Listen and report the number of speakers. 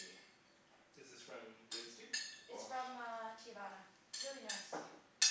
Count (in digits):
2